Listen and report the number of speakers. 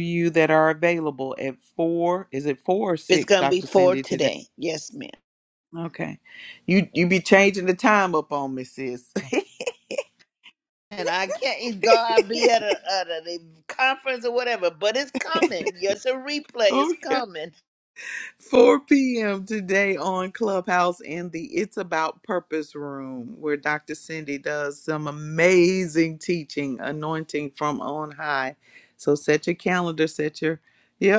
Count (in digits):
2